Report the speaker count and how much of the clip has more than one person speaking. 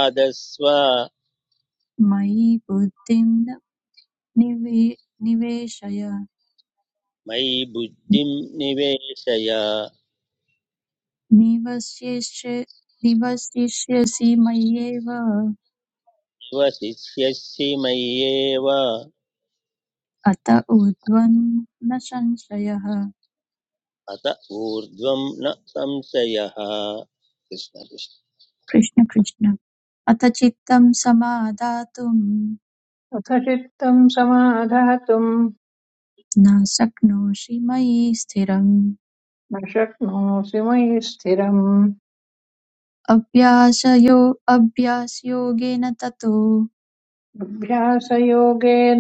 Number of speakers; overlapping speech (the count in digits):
3, no overlap